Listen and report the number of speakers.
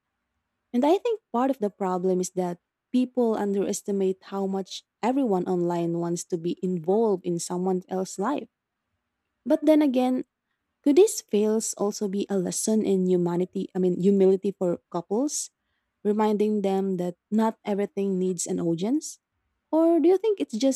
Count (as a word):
one